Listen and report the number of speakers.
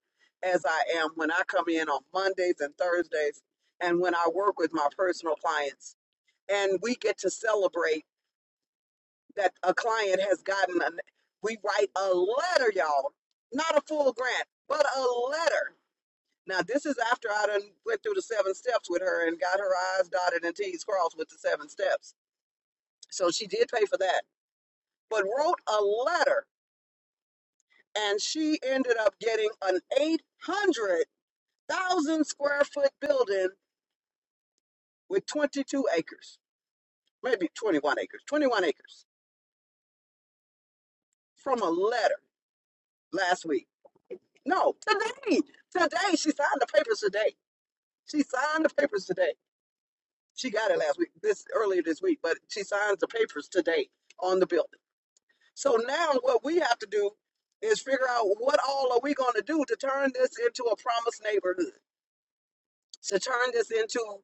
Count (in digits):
1